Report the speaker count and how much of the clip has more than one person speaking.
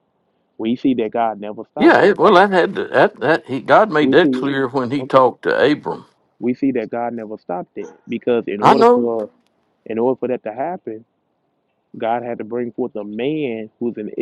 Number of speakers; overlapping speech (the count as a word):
two, about 13%